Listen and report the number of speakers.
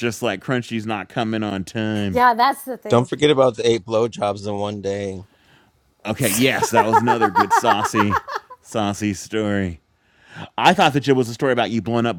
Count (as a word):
three